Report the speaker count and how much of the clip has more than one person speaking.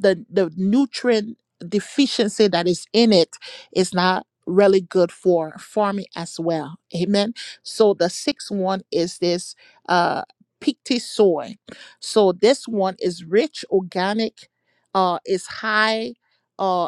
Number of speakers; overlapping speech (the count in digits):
1, no overlap